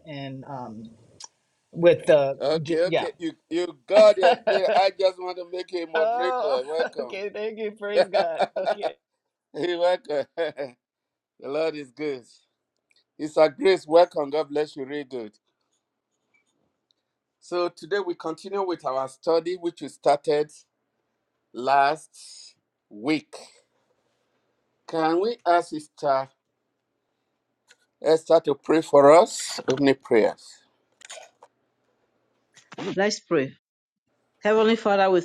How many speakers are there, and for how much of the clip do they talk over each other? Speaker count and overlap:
3, about 4%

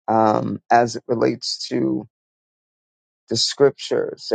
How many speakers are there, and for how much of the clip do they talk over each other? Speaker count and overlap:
1, no overlap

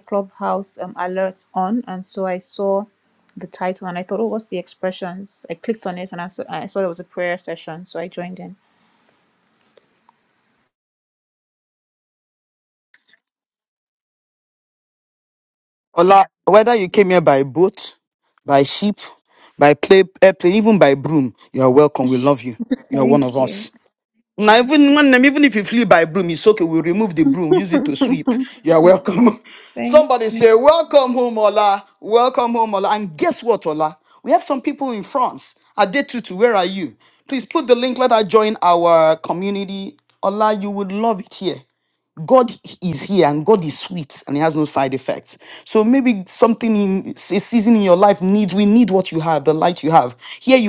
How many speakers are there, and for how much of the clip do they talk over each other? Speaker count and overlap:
2, about 3%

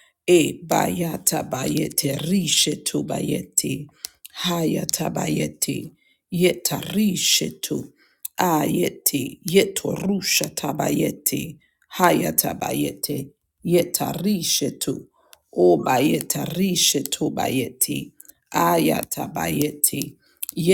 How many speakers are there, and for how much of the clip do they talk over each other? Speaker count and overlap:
1, no overlap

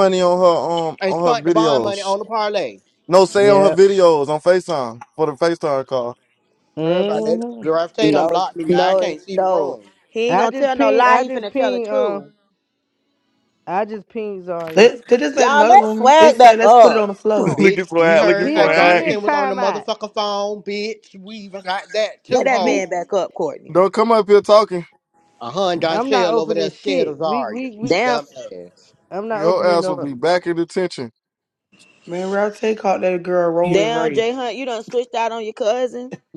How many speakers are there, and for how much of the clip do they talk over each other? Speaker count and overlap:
5, about 39%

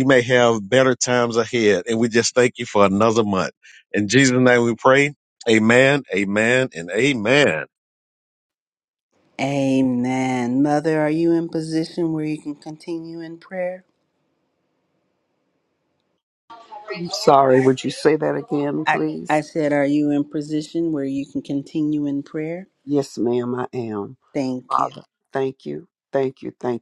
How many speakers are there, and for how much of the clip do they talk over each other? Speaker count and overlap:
3, about 3%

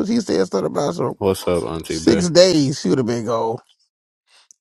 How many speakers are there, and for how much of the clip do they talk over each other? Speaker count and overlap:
2, about 4%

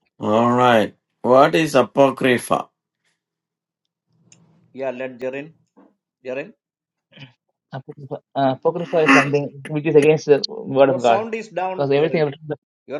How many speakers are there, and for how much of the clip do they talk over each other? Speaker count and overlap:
3, about 6%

